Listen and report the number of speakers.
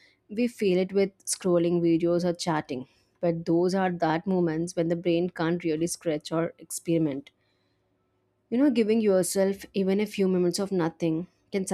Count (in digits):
1